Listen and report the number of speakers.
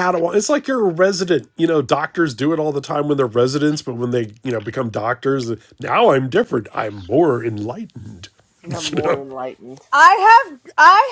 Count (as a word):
three